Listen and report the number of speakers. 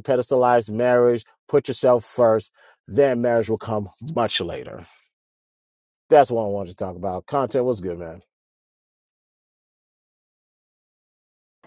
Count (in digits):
1